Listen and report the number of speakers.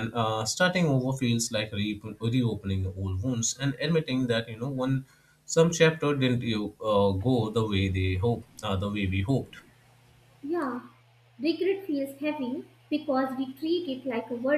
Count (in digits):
2